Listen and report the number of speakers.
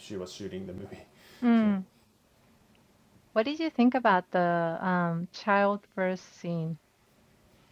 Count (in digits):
2